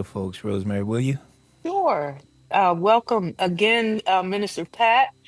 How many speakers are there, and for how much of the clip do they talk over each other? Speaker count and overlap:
two, no overlap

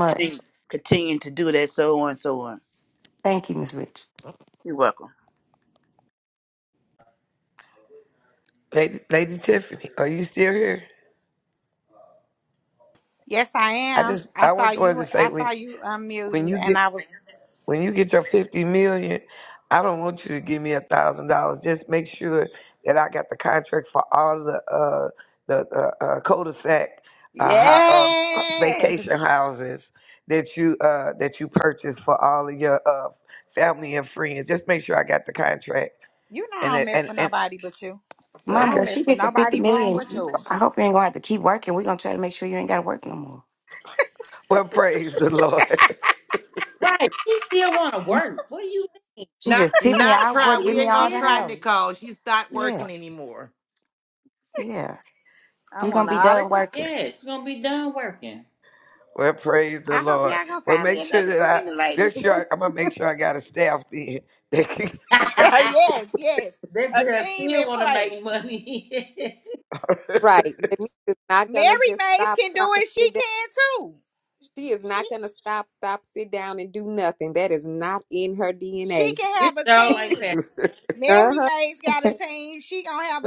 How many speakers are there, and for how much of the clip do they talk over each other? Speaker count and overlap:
seven, about 20%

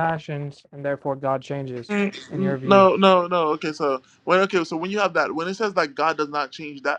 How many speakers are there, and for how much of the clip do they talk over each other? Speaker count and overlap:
two, about 8%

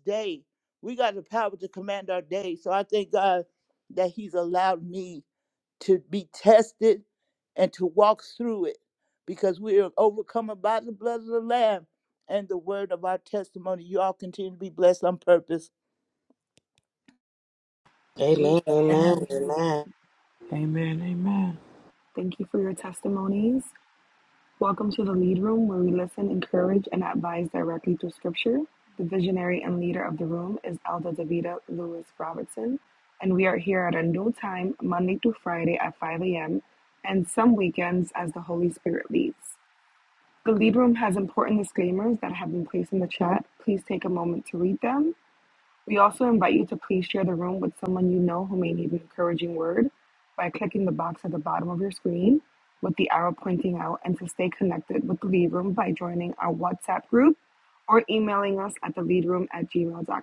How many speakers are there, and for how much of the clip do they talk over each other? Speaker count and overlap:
four, about 1%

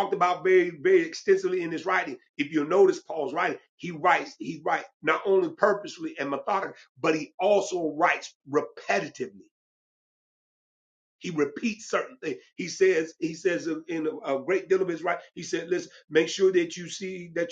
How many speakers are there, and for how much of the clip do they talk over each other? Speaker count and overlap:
one, no overlap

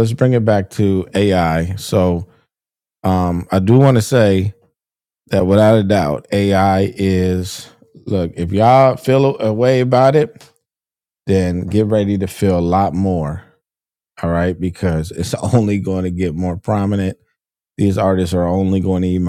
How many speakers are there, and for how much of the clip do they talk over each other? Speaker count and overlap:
one, no overlap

